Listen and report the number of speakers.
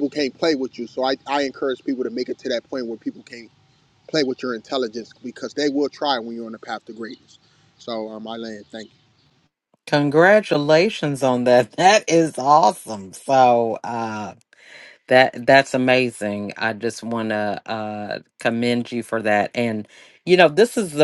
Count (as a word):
two